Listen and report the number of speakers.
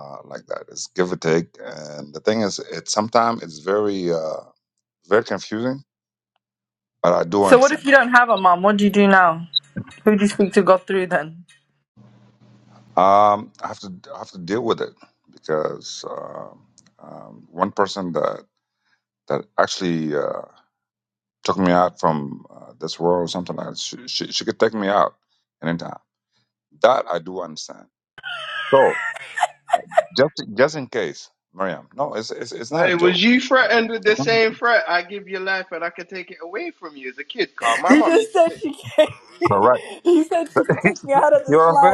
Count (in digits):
3